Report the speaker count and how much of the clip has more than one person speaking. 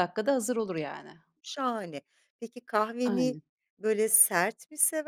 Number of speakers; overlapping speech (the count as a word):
two, about 6%